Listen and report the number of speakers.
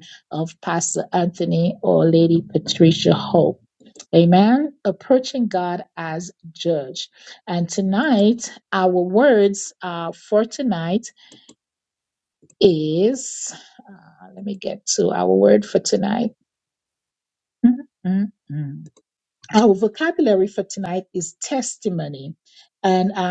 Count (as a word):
one